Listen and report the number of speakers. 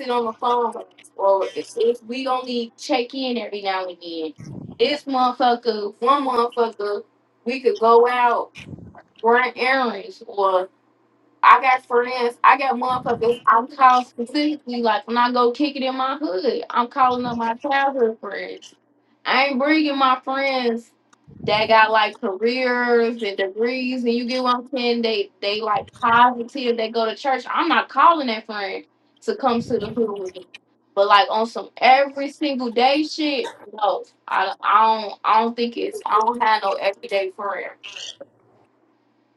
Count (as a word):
one